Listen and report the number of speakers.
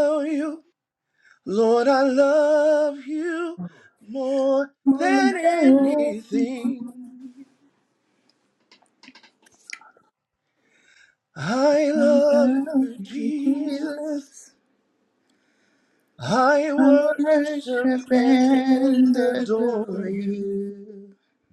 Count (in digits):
2